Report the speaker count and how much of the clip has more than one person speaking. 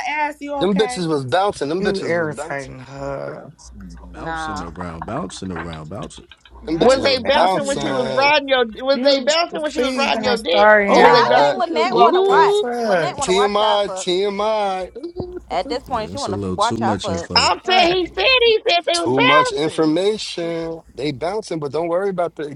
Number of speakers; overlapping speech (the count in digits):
6, about 42%